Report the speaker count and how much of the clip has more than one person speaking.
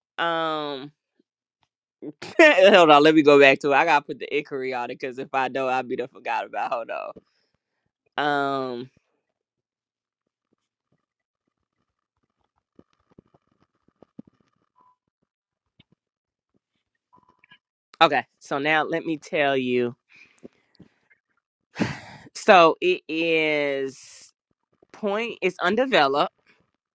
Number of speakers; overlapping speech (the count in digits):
1, no overlap